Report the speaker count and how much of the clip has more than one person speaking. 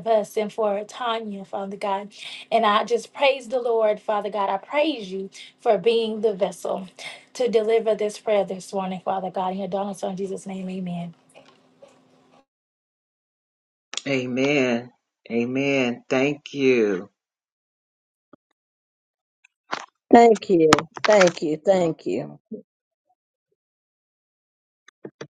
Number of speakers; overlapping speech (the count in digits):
3, no overlap